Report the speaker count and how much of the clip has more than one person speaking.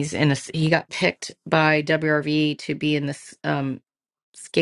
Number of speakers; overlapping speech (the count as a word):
one, no overlap